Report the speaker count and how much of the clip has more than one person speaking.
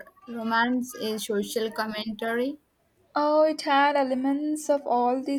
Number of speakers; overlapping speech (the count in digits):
2, no overlap